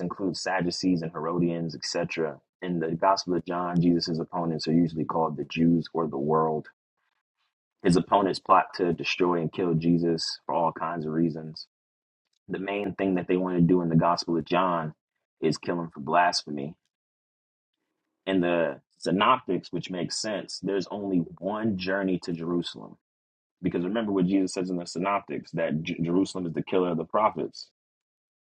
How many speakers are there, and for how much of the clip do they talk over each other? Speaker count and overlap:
1, no overlap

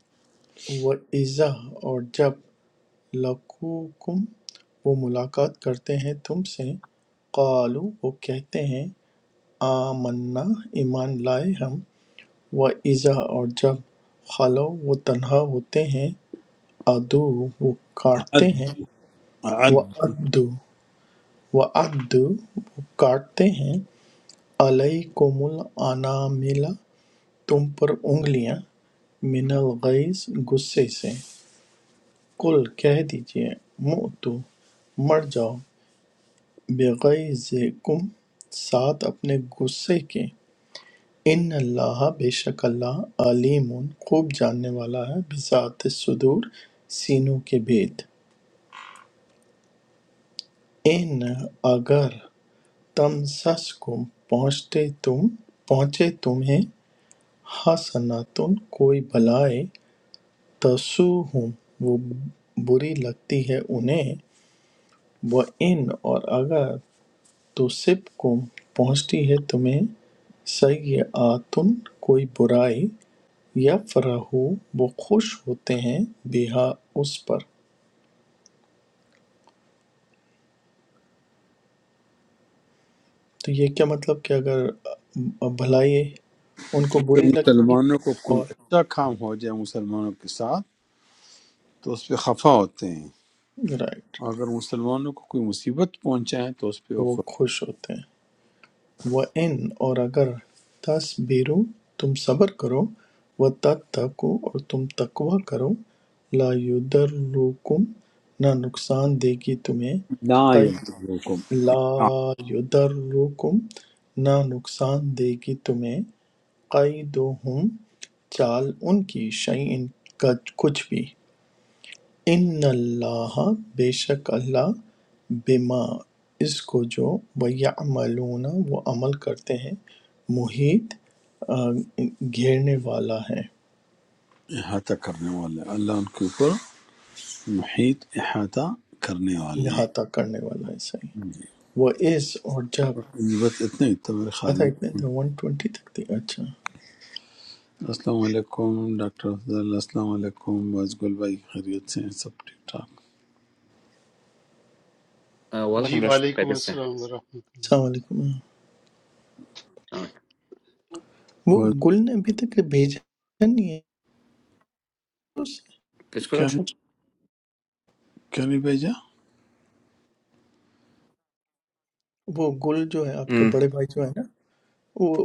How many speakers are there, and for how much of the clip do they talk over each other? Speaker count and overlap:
4, about 2%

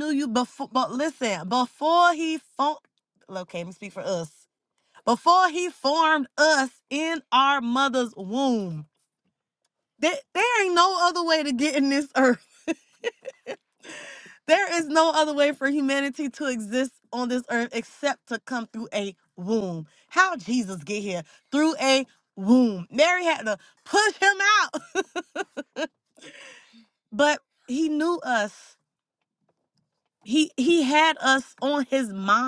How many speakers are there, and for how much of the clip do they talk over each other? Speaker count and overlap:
1, no overlap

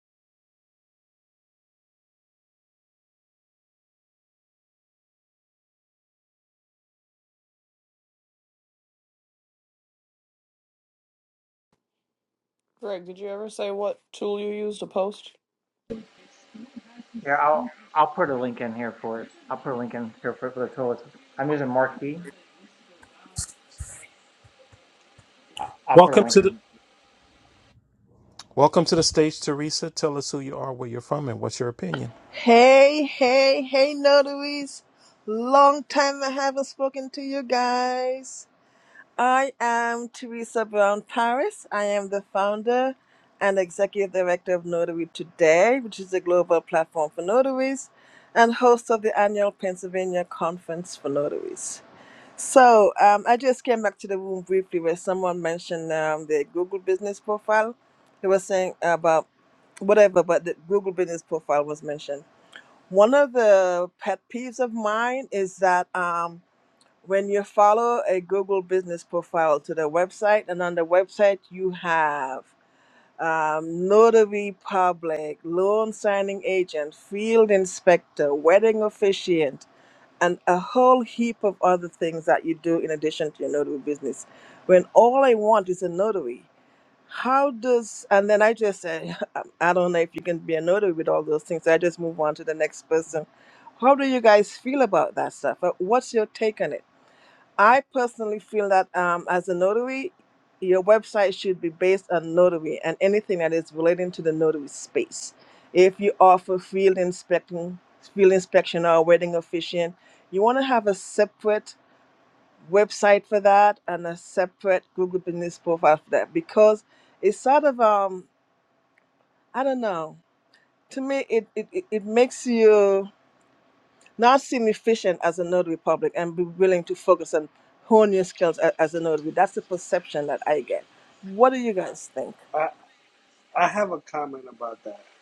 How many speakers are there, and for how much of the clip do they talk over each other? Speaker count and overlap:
5, under 1%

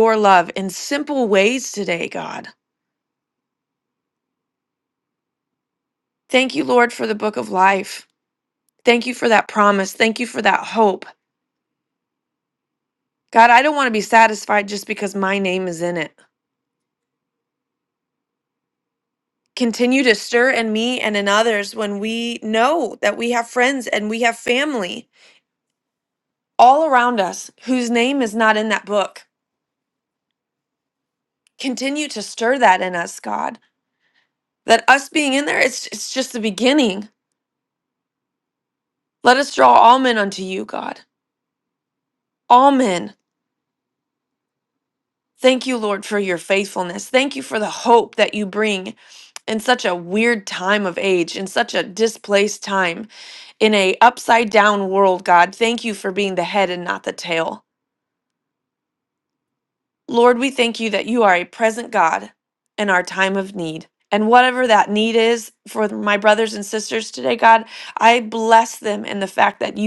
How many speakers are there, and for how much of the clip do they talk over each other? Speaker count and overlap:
1, no overlap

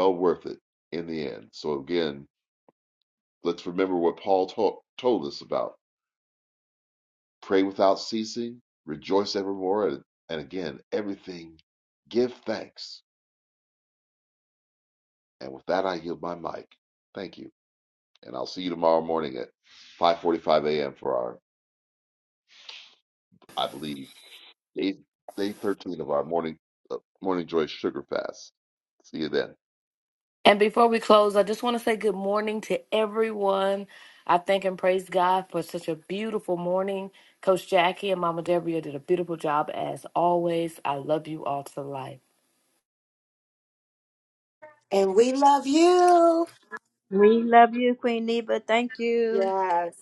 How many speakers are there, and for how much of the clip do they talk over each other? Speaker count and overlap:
4, under 1%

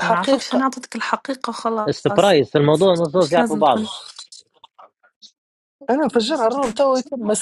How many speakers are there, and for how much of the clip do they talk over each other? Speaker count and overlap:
3, about 23%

